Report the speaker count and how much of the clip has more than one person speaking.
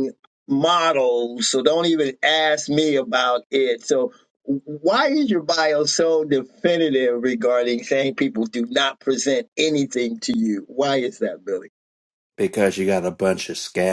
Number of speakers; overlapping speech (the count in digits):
2, no overlap